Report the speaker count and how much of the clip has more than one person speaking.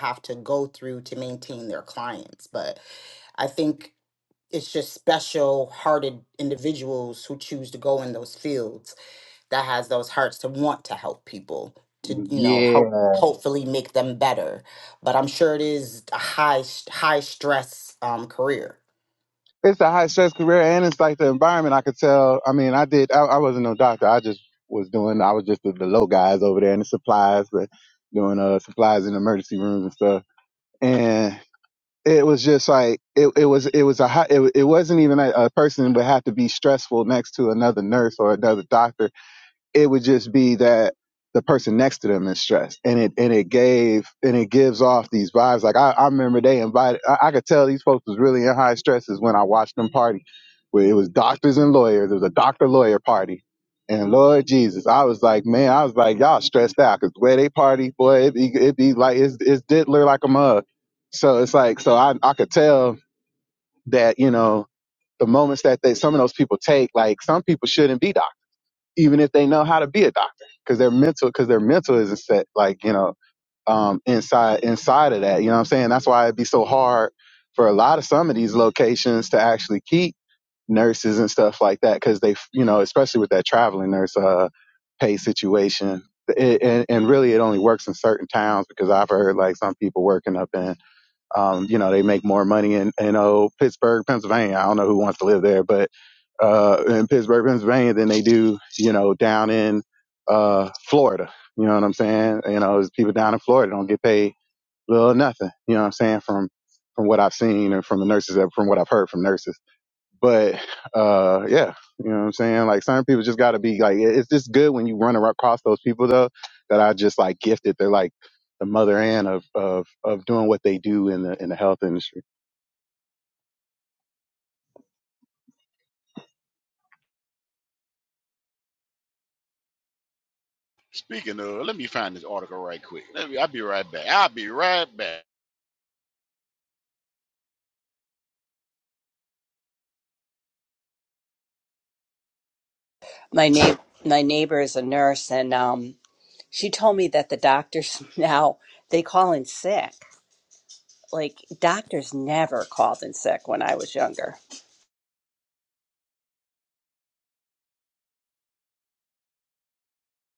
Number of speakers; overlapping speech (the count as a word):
four, under 1%